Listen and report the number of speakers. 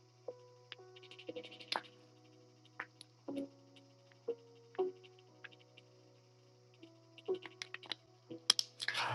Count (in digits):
0